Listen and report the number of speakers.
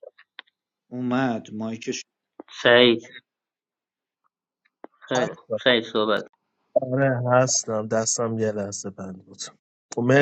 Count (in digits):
3